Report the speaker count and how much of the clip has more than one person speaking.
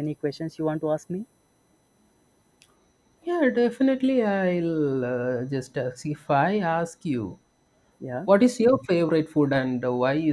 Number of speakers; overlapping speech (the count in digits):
2, no overlap